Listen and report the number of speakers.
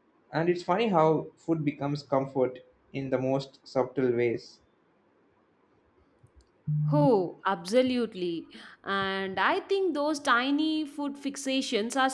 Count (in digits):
2